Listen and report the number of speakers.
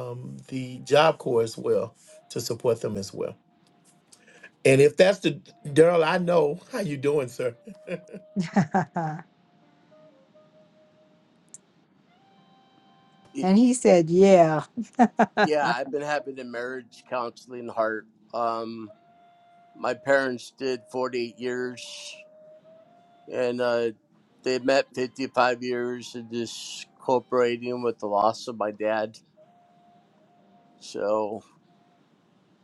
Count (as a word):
three